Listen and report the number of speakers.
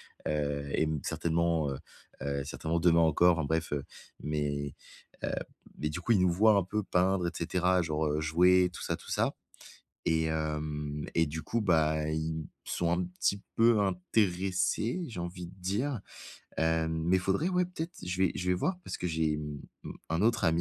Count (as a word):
one